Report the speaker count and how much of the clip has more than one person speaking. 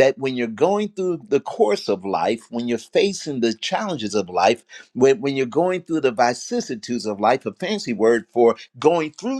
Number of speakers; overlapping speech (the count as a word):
one, no overlap